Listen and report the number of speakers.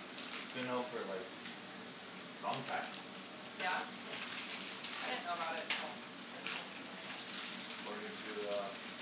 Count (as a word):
two